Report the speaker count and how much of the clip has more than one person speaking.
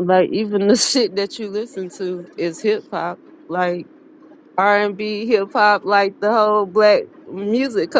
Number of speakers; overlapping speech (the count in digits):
1, no overlap